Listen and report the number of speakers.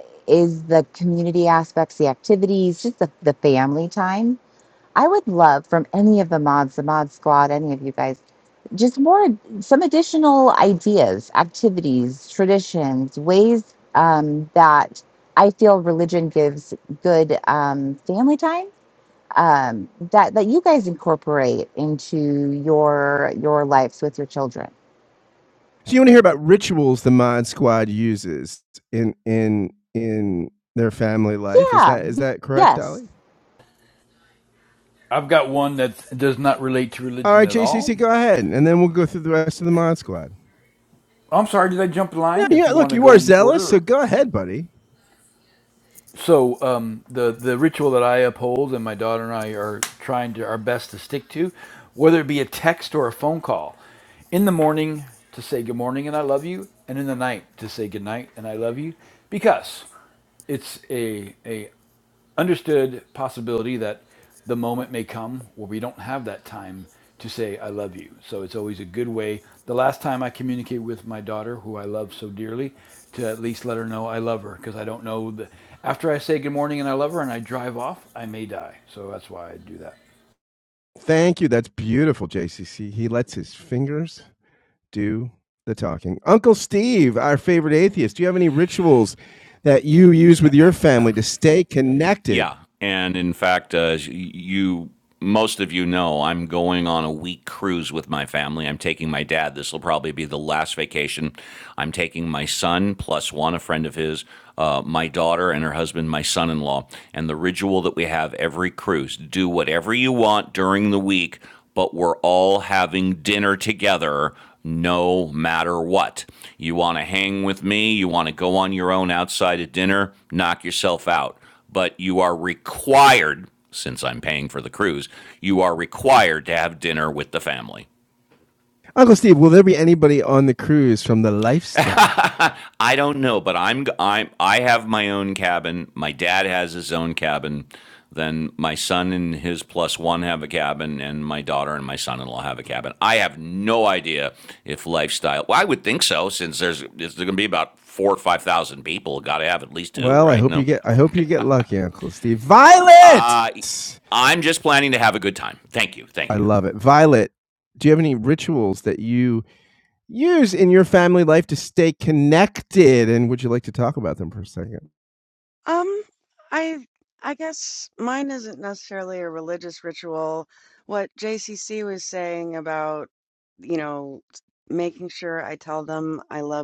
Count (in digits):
5